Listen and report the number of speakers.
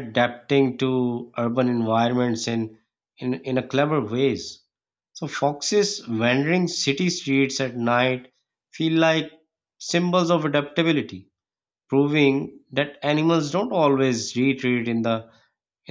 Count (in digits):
1